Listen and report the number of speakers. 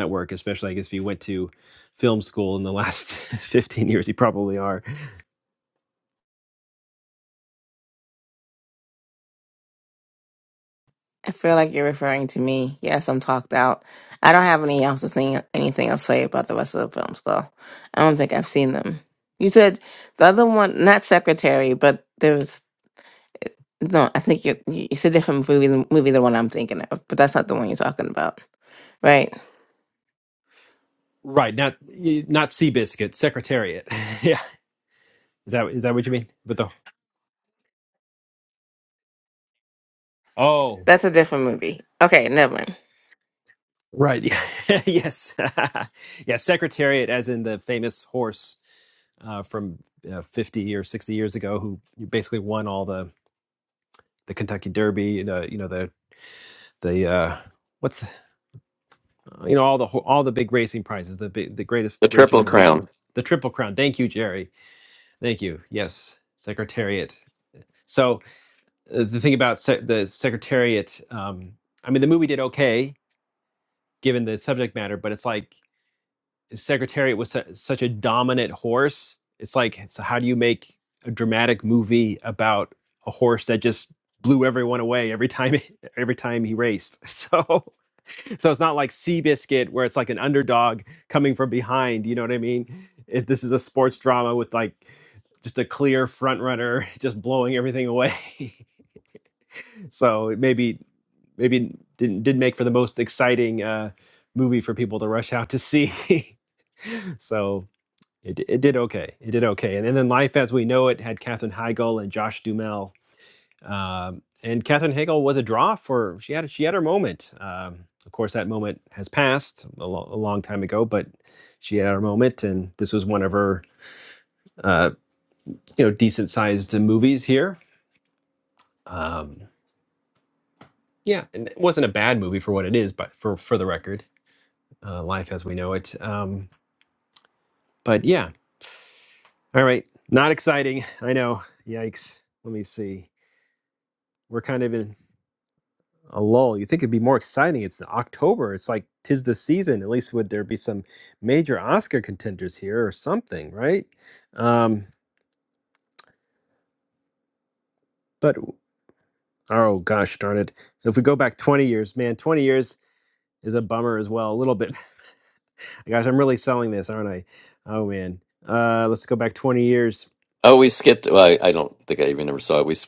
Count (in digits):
3